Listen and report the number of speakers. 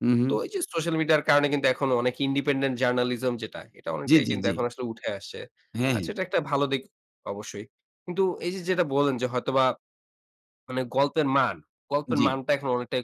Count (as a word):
two